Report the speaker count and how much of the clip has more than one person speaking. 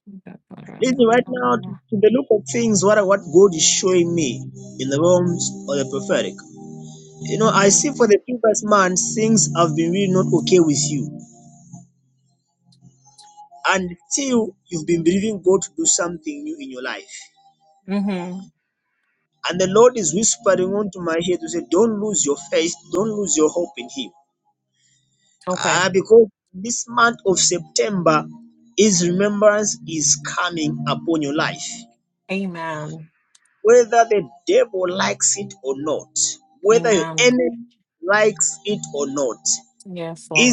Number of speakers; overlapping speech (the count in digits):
2, about 3%